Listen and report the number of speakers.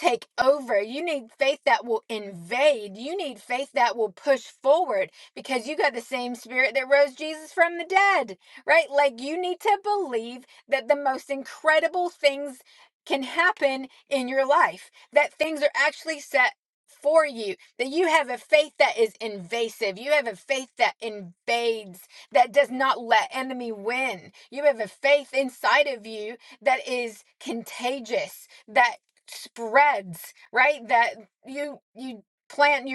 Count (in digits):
1